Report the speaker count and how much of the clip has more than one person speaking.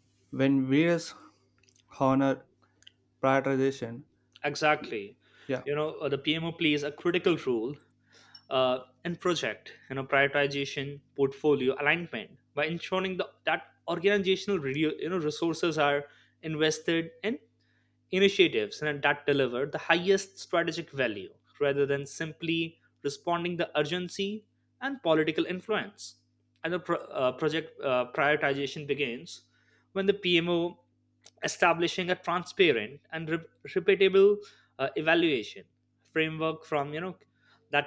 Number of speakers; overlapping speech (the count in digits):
2, no overlap